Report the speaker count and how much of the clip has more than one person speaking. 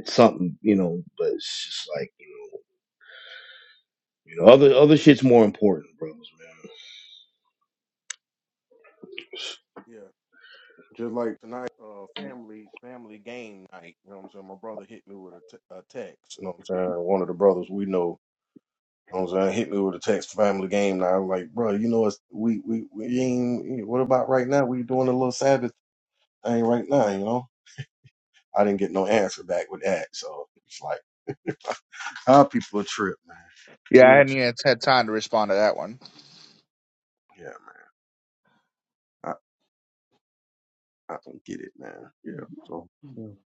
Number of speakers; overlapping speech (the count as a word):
three, about 1%